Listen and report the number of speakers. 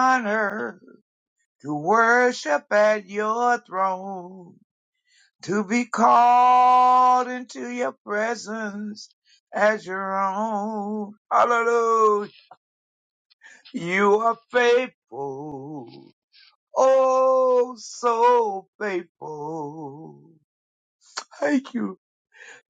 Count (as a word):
one